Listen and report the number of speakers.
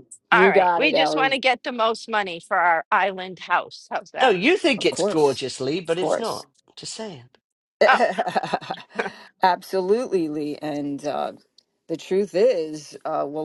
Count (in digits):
3